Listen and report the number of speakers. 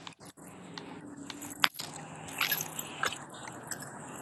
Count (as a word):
zero